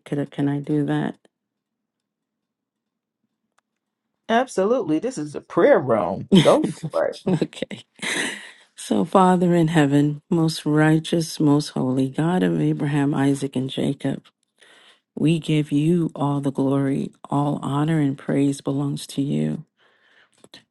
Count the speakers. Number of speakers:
two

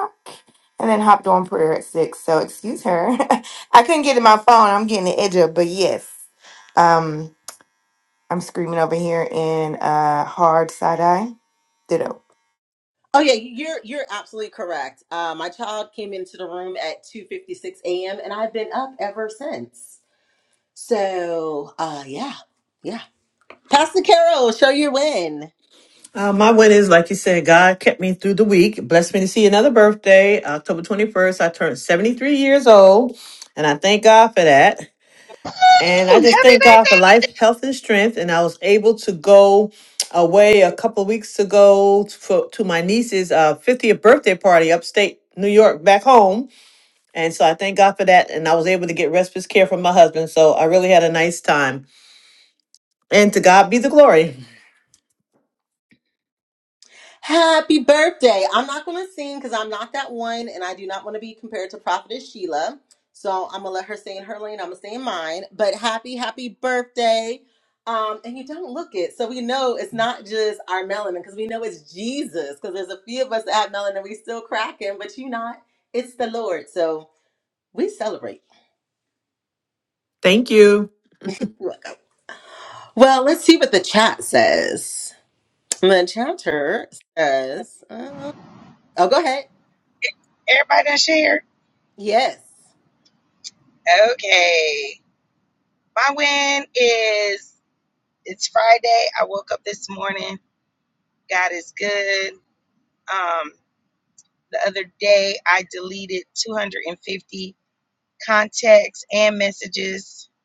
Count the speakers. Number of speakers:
four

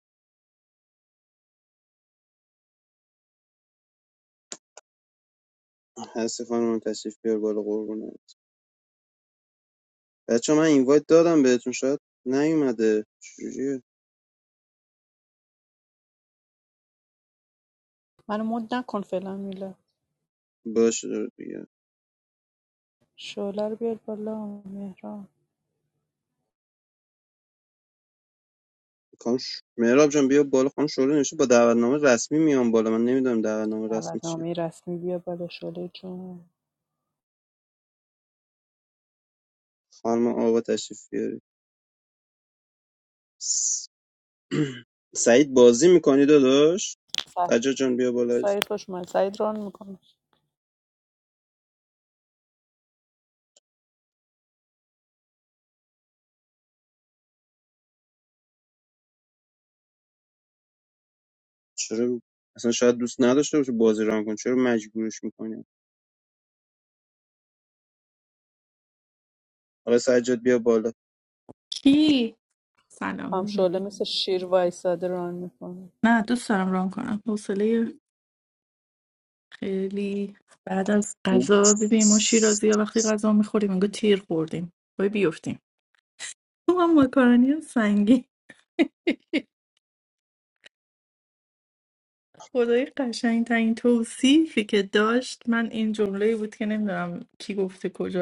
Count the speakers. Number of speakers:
three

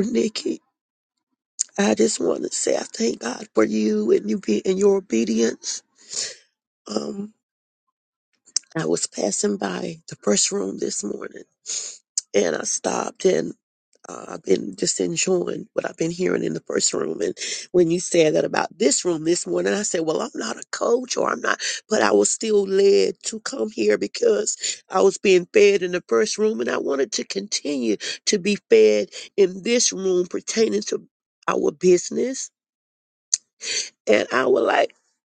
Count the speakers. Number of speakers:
one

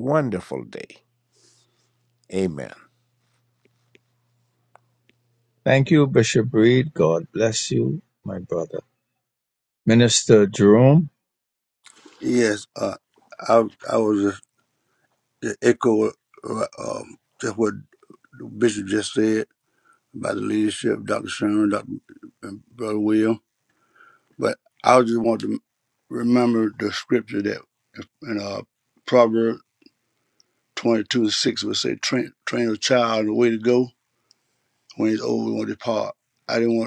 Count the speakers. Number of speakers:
three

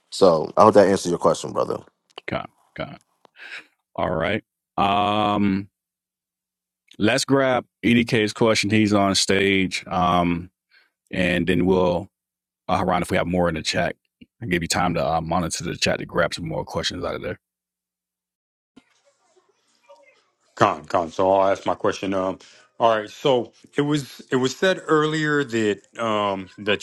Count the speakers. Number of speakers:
three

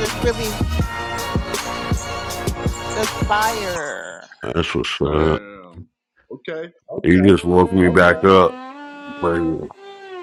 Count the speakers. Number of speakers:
three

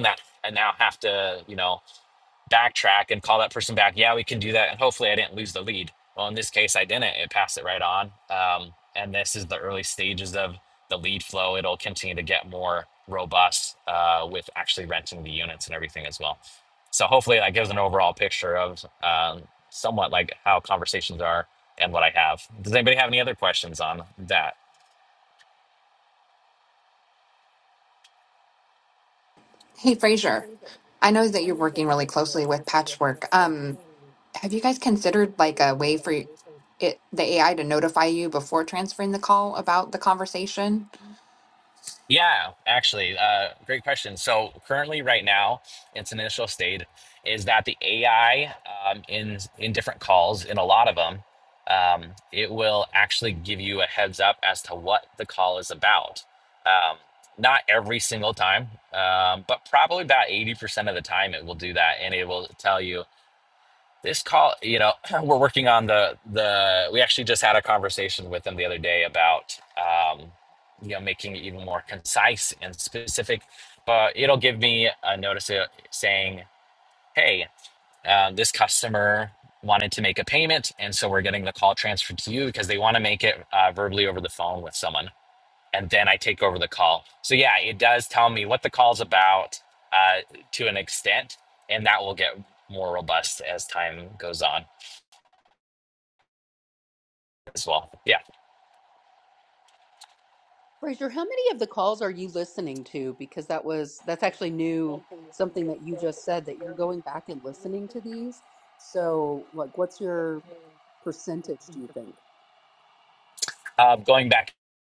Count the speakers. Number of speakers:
three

